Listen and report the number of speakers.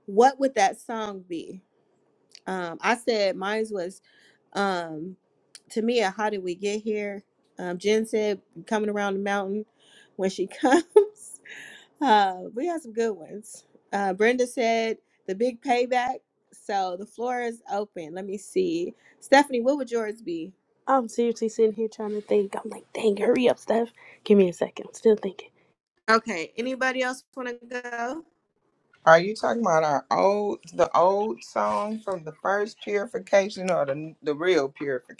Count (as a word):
three